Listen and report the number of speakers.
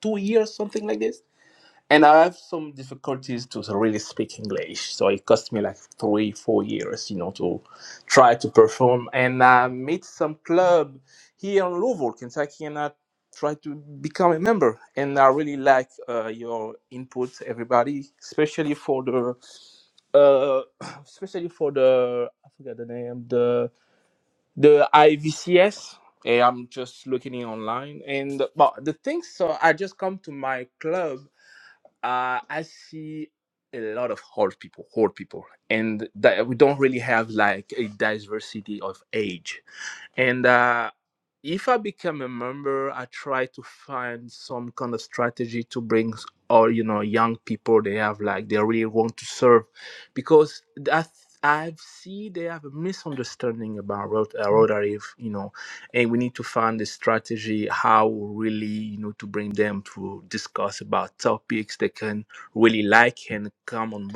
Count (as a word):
one